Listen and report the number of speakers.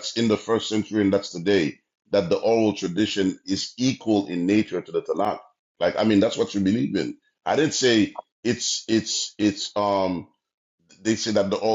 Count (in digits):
1